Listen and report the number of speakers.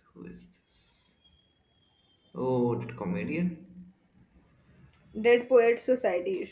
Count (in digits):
2